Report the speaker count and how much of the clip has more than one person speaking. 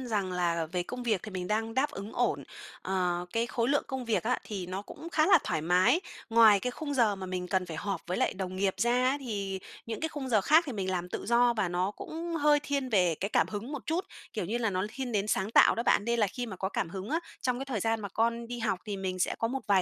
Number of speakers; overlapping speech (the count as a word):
one, no overlap